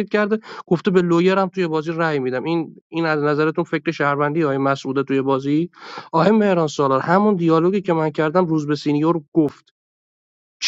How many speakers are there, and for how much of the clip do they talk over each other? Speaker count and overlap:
one, no overlap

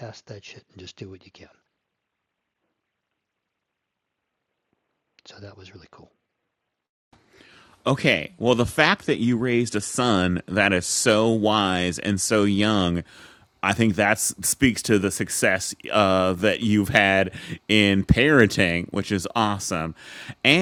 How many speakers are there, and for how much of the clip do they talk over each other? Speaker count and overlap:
two, no overlap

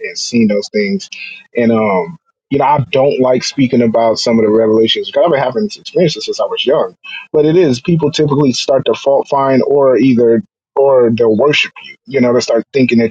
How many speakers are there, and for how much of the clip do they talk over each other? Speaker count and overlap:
one, no overlap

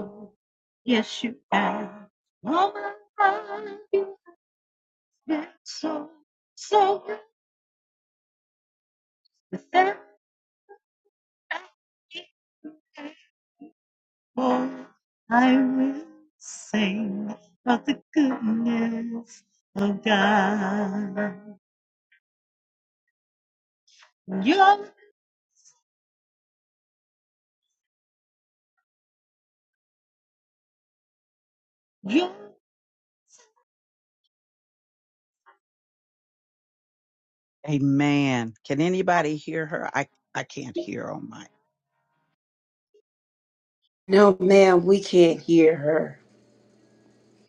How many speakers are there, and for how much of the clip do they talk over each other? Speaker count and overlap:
three, no overlap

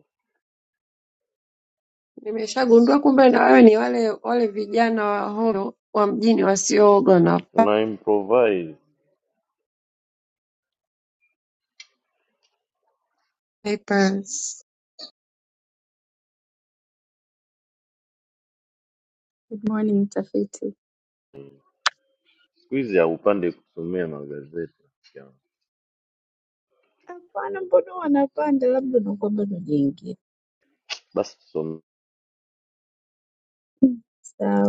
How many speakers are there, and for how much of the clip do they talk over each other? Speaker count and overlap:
three, no overlap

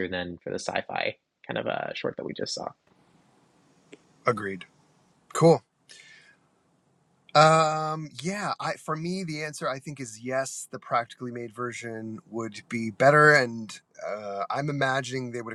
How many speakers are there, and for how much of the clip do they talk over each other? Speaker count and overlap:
two, no overlap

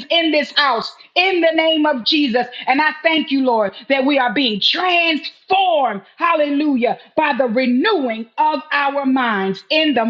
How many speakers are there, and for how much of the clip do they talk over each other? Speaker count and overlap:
one, no overlap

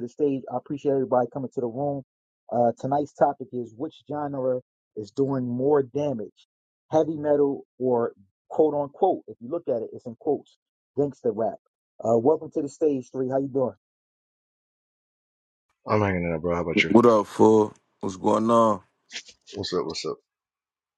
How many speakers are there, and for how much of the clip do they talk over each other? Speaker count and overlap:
three, about 1%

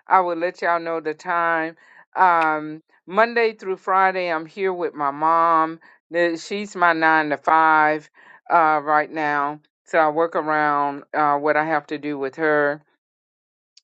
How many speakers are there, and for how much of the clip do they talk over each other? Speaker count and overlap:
one, no overlap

